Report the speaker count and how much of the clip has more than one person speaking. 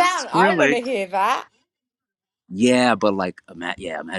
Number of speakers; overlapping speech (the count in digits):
2, about 21%